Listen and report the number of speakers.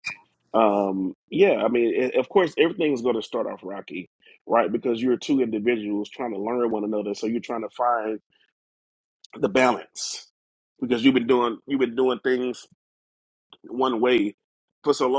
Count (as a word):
one